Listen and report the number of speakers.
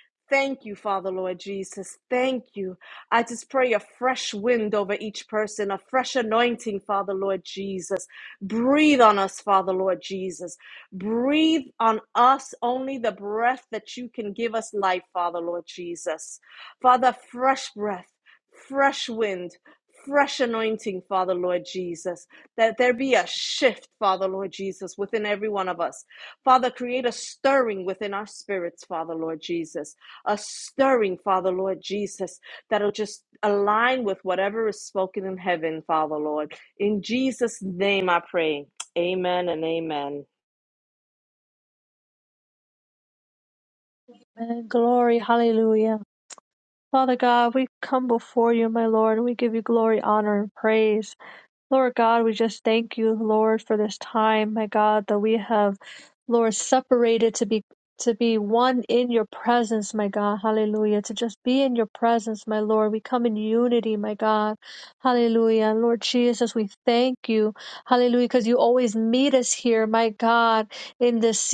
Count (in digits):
2